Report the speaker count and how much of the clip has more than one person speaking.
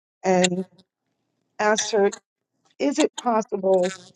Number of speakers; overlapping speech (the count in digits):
1, no overlap